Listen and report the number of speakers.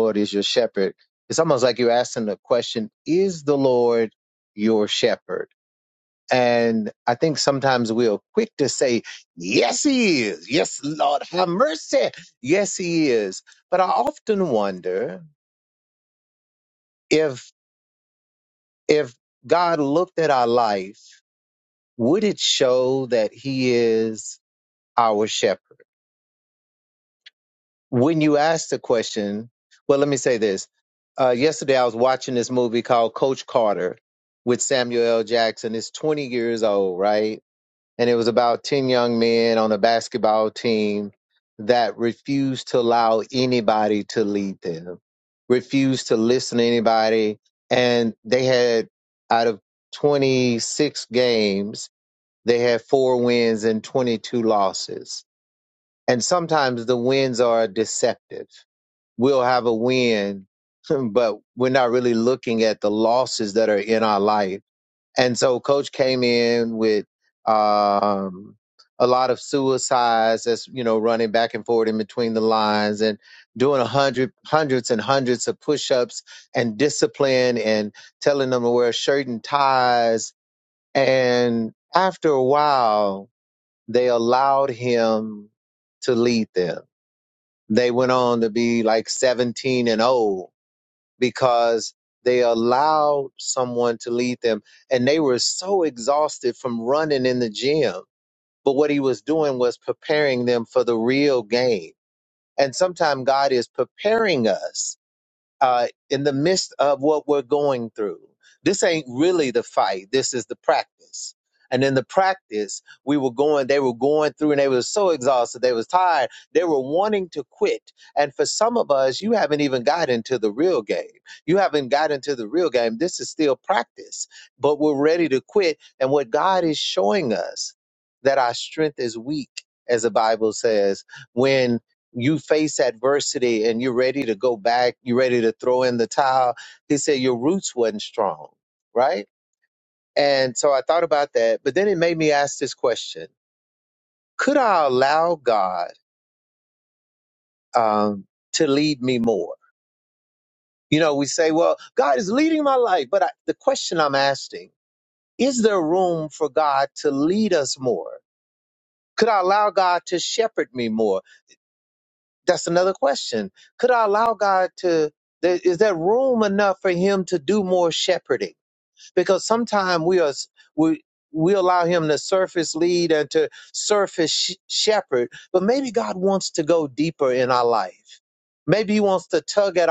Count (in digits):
1